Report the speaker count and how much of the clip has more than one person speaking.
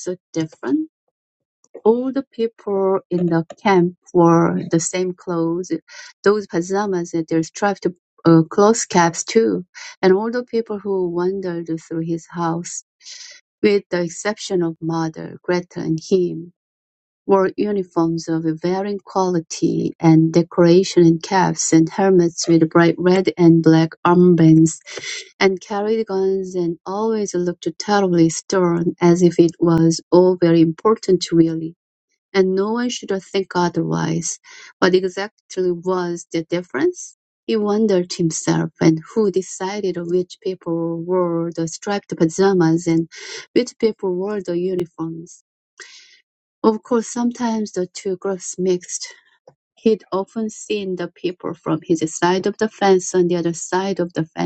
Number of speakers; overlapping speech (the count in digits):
1, no overlap